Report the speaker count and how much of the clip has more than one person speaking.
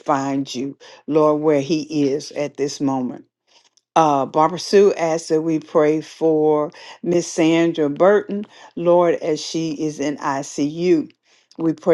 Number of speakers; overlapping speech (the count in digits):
1, no overlap